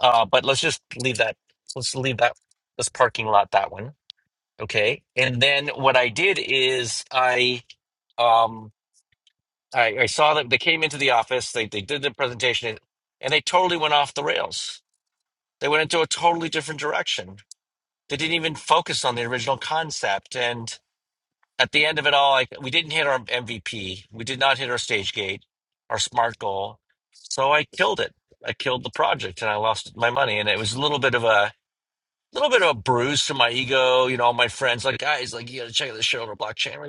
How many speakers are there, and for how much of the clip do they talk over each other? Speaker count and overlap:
1, no overlap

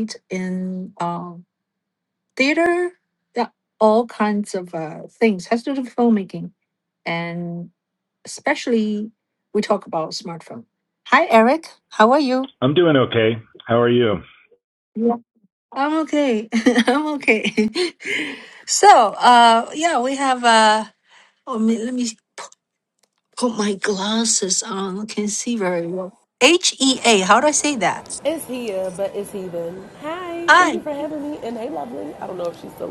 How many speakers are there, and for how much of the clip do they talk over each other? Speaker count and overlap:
3, about 1%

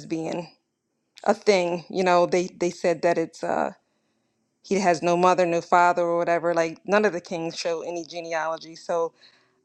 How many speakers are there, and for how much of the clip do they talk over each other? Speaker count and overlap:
1, no overlap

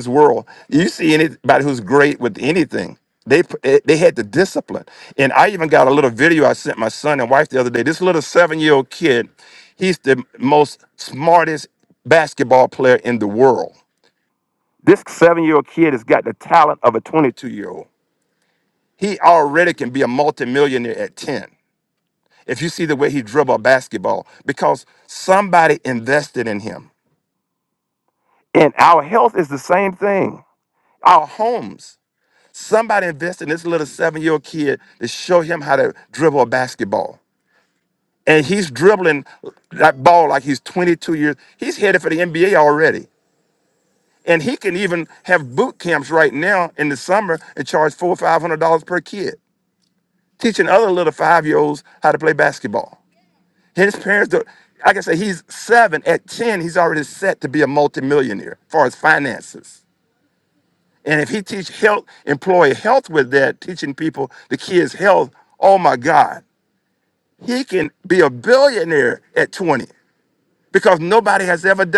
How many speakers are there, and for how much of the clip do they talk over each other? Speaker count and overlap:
1, no overlap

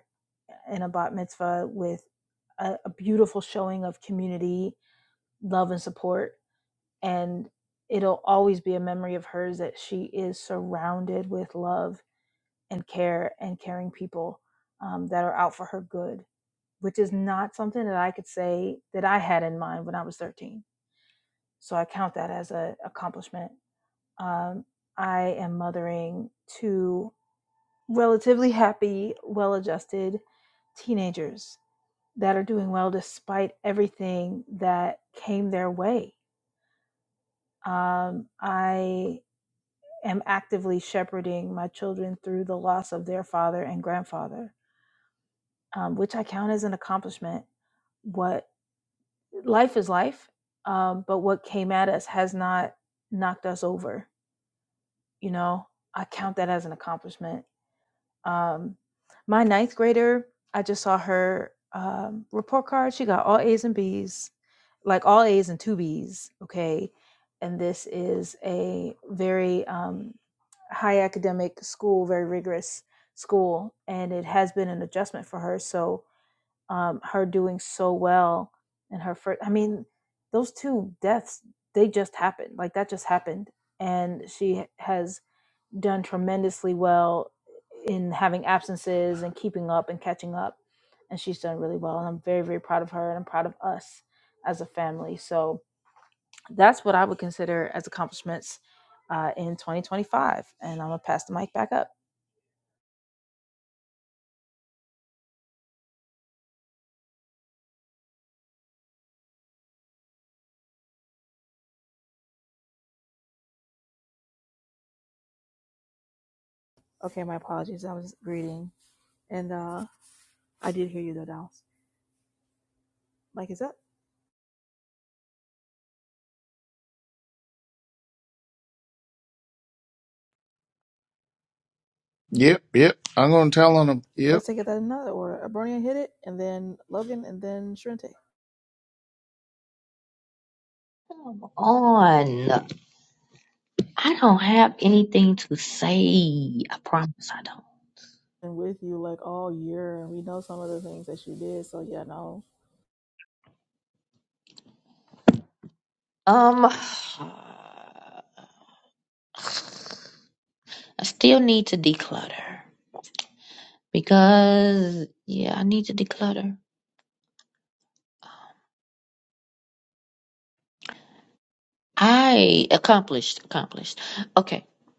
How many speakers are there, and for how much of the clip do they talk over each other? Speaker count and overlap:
4, under 1%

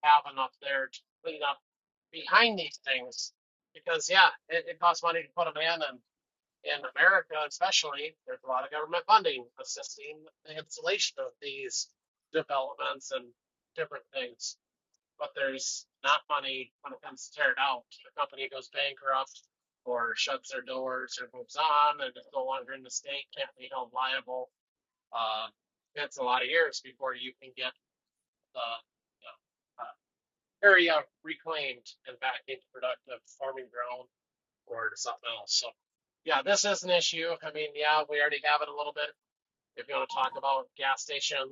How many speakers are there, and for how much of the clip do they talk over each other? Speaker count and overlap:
1, no overlap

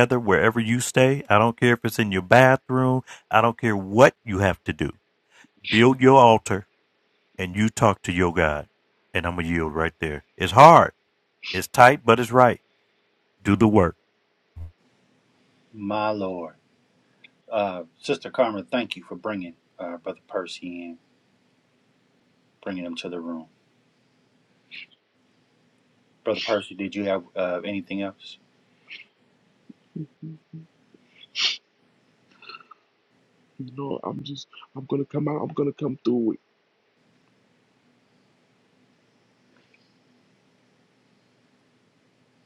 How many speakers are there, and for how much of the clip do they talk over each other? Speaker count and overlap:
3, no overlap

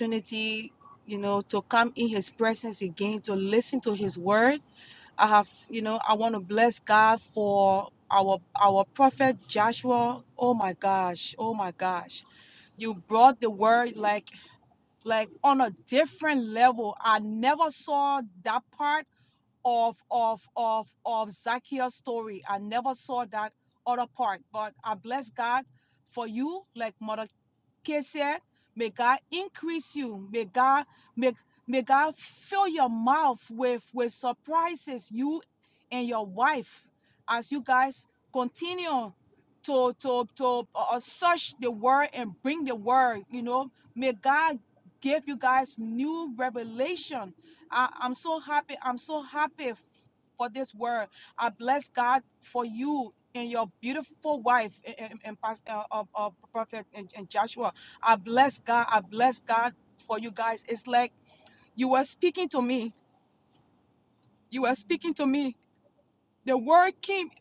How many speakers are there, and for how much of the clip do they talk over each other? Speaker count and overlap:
1, no overlap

